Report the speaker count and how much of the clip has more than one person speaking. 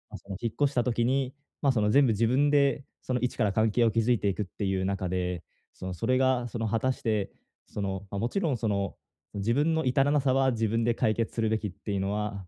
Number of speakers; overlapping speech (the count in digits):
1, no overlap